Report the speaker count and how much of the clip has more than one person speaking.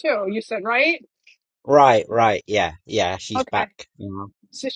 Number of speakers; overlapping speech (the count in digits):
2, no overlap